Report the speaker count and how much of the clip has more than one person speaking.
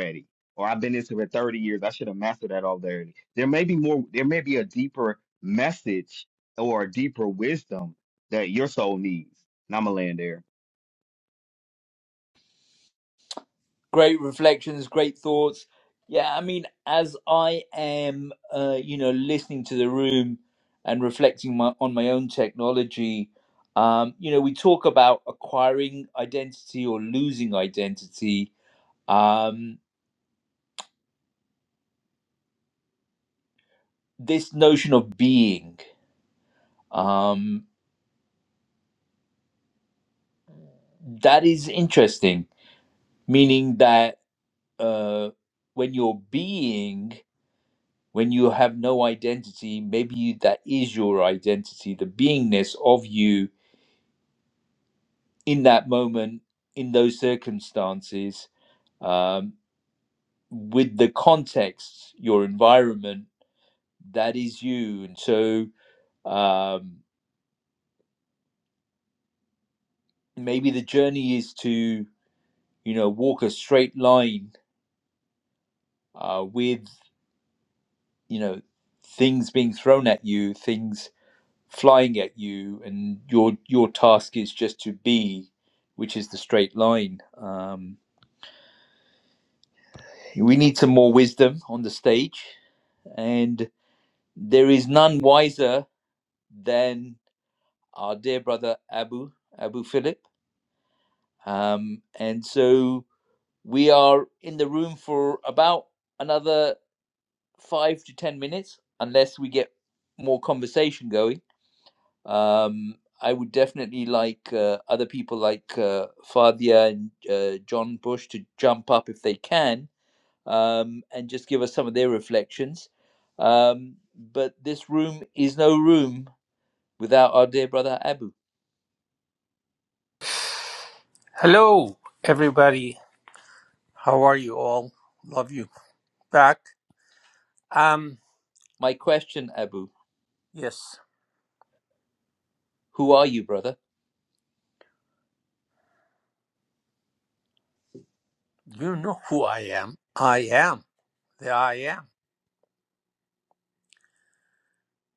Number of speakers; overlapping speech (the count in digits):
3, no overlap